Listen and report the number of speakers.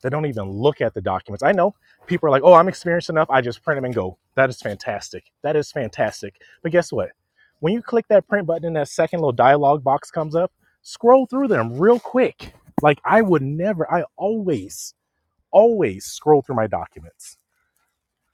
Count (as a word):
one